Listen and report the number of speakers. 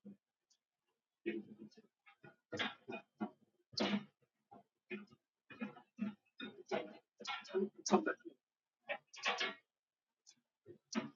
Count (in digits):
0